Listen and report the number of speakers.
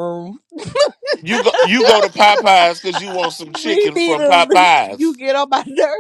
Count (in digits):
2